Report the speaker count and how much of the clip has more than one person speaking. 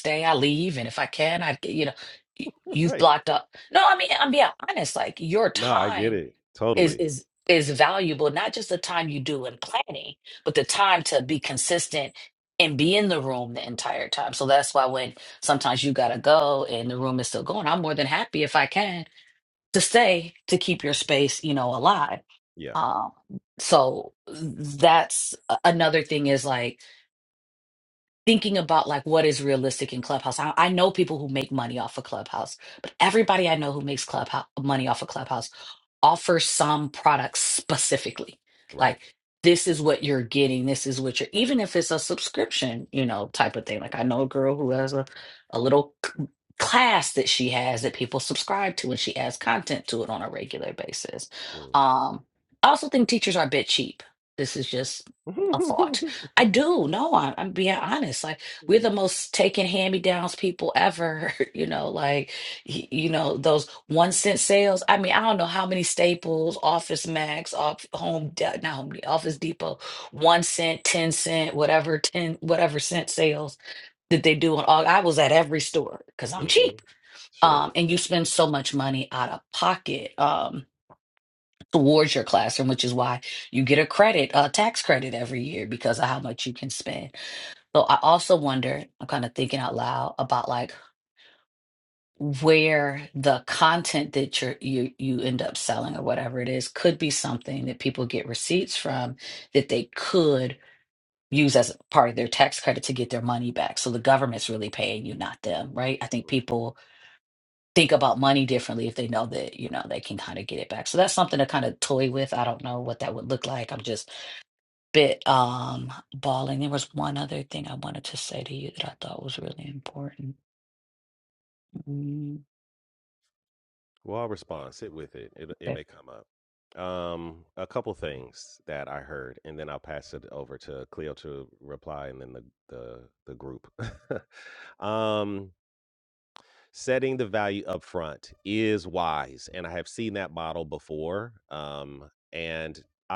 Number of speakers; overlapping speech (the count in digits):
2, about 2%